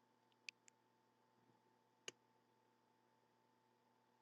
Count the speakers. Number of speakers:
0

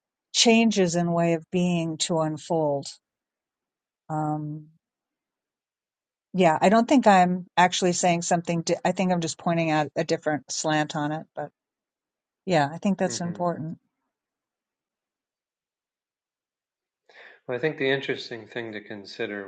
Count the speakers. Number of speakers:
2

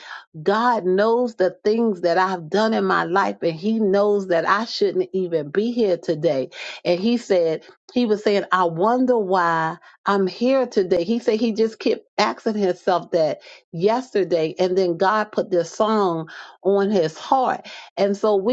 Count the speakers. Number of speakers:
1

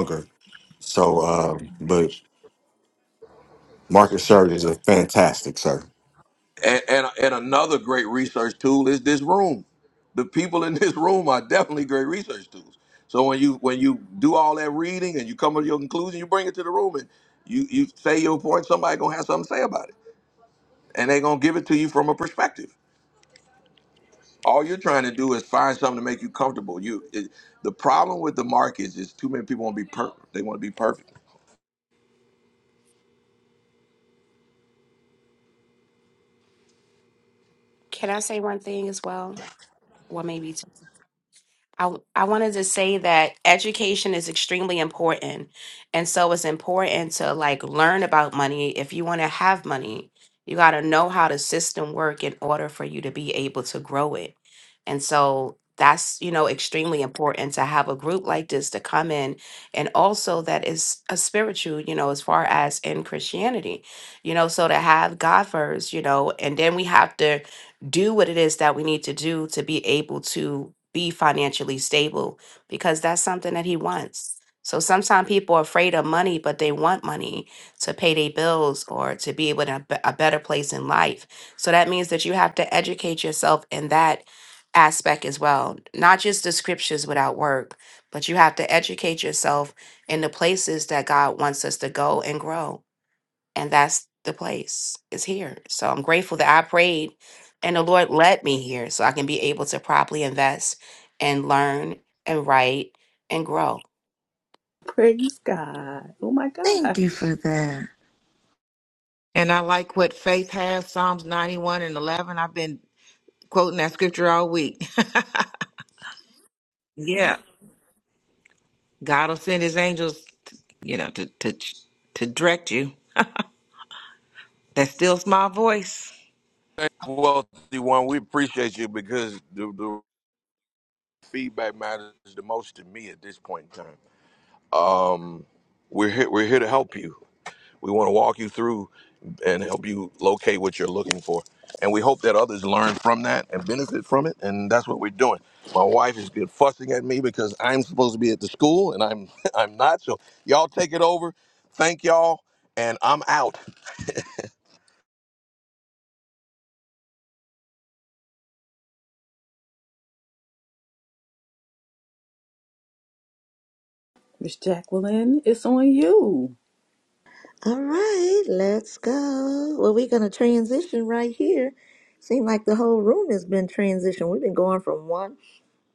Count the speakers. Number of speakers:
6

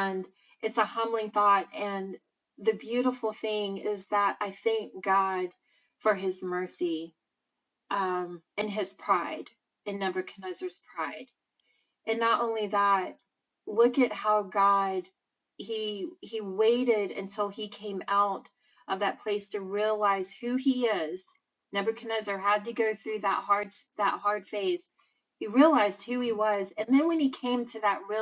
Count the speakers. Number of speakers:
1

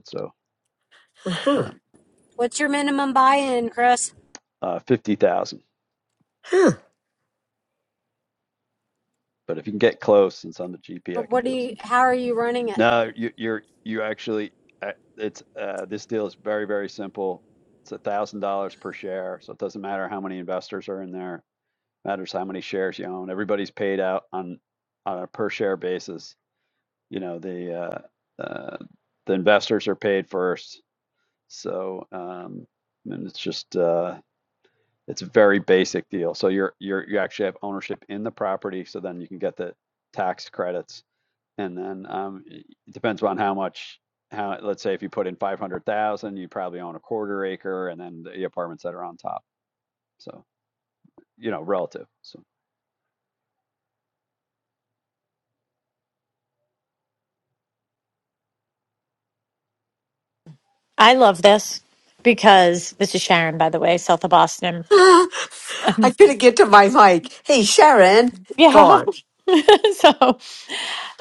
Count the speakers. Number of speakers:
4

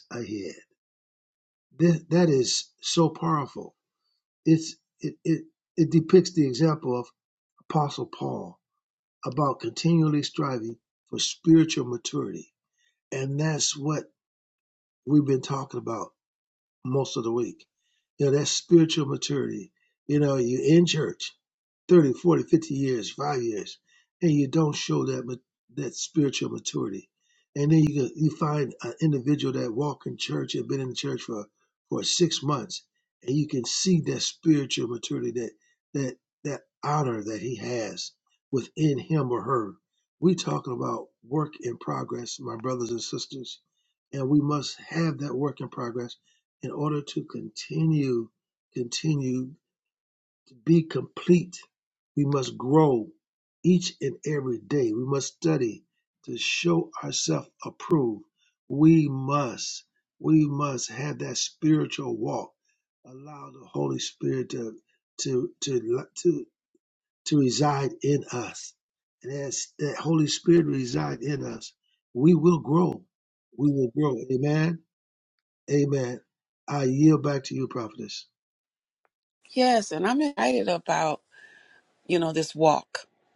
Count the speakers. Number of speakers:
2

